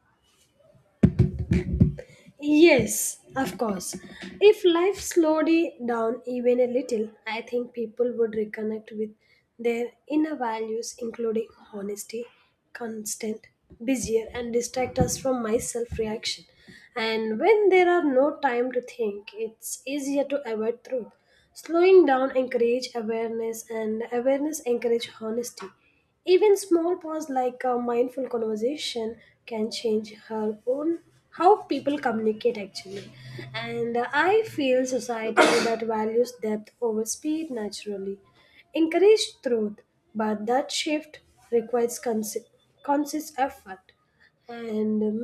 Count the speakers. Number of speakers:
1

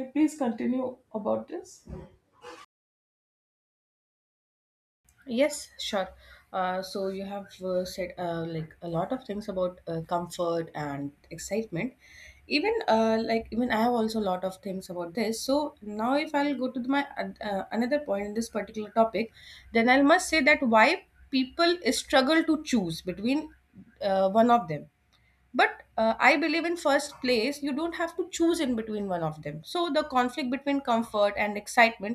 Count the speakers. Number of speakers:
2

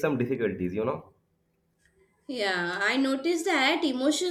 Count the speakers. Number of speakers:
2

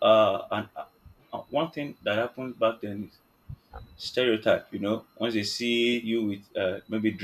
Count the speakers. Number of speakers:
1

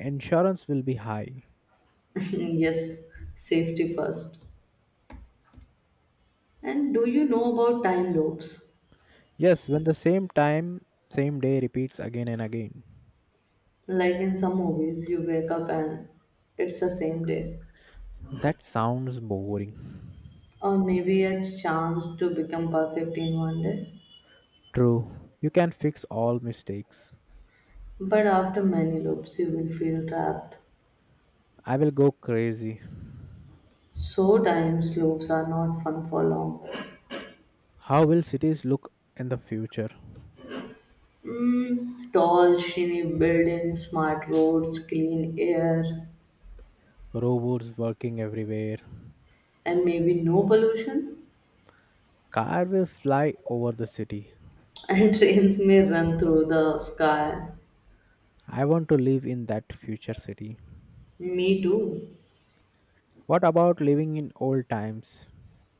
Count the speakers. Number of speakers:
2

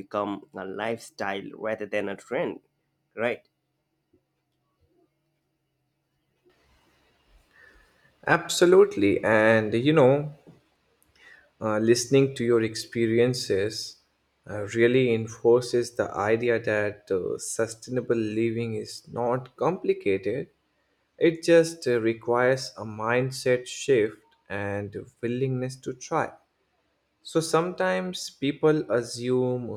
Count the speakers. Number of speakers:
2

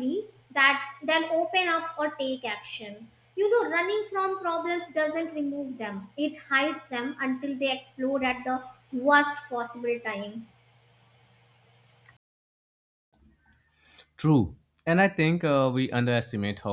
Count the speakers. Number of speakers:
2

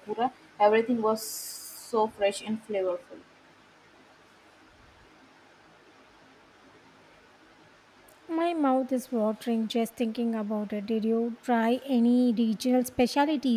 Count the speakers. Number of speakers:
2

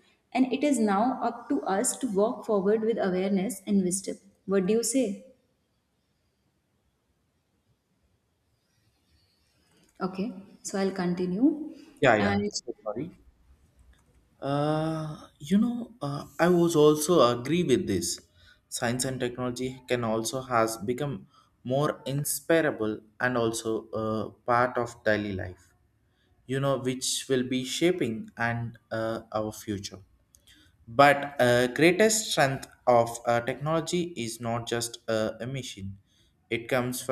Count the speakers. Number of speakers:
2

